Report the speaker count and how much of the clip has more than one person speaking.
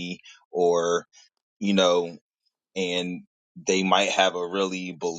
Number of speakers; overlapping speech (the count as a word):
one, no overlap